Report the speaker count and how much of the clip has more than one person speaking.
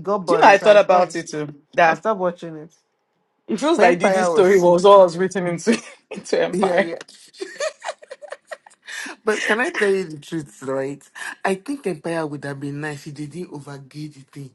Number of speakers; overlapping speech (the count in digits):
3, about 17%